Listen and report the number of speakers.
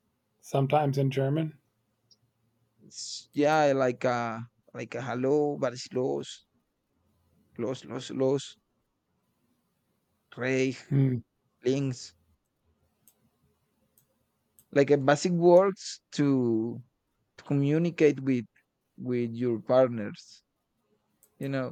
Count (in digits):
2